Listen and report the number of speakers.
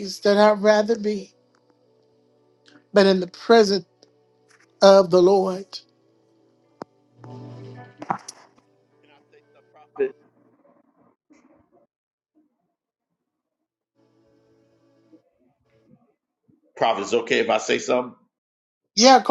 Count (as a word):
two